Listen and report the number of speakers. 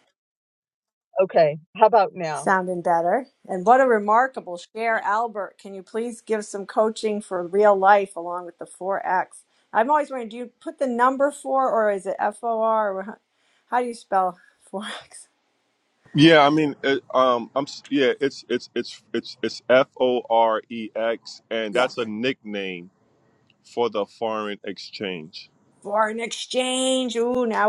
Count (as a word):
three